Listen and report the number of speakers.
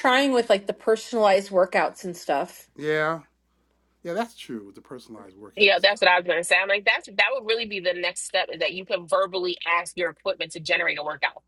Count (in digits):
3